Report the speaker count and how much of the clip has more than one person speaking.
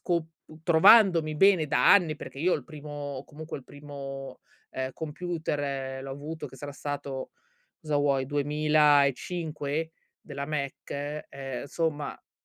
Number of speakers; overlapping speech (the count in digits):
1, no overlap